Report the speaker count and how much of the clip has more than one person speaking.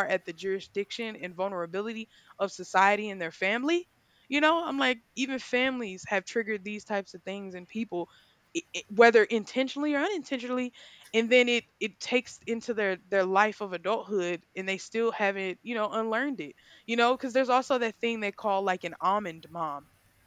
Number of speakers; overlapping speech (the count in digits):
1, no overlap